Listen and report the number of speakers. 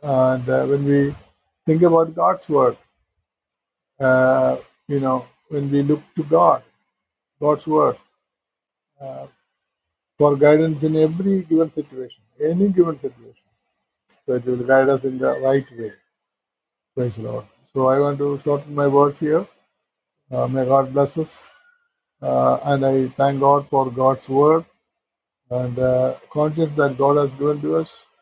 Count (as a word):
one